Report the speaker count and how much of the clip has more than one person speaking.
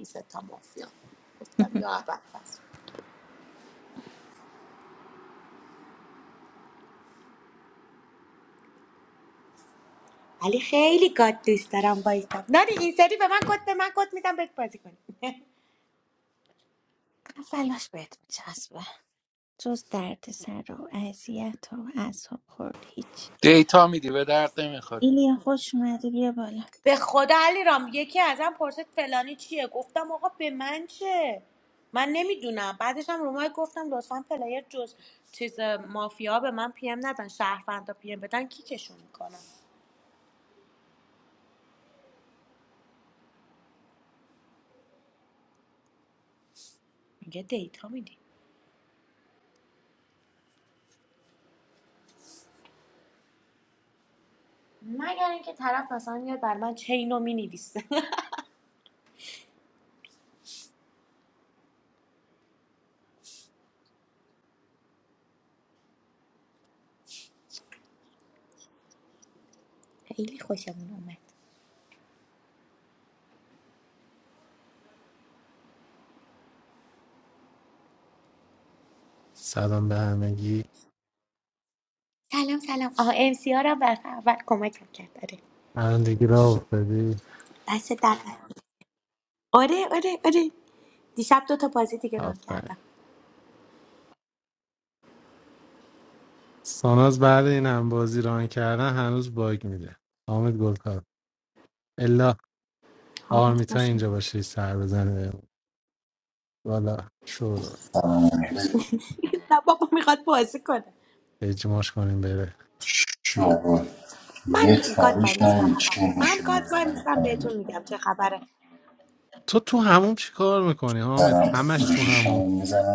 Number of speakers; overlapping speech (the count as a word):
five, about 5%